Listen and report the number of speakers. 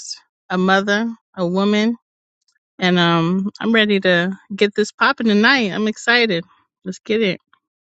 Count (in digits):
1